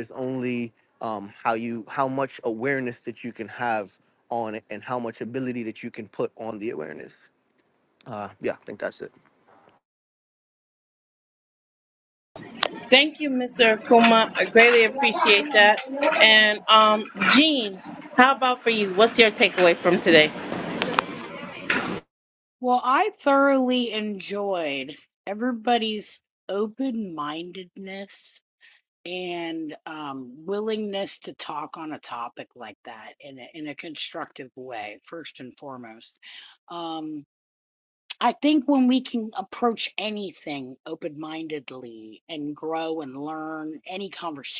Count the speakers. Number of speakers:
3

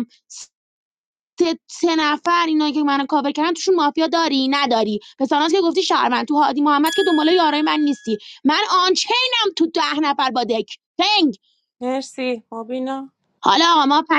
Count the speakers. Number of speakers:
2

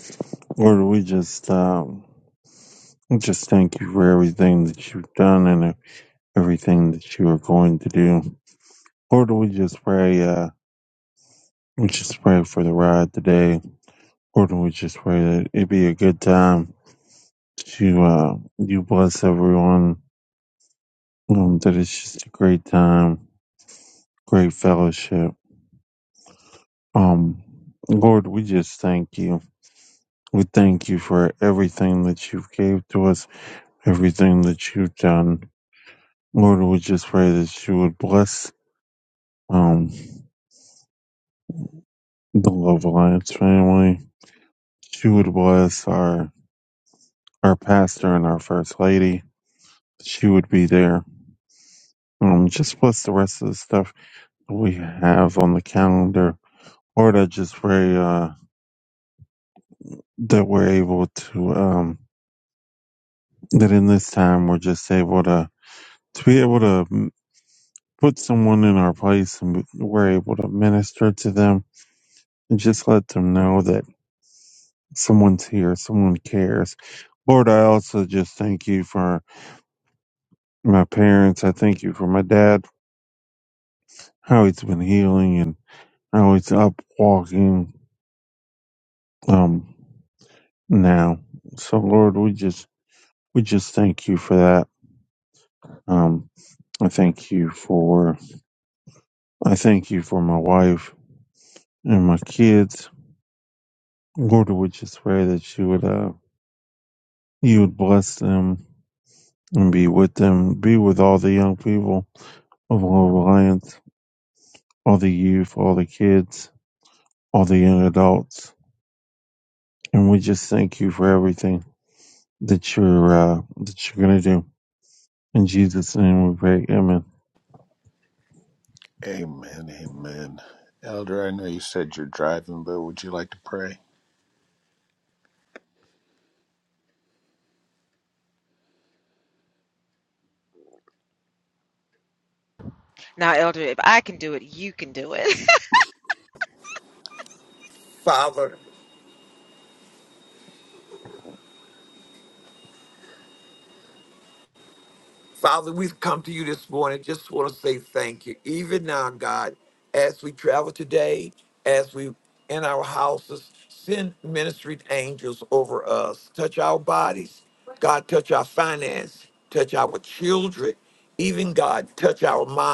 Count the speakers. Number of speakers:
4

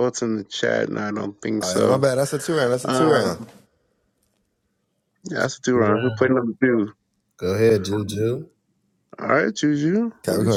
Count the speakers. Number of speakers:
3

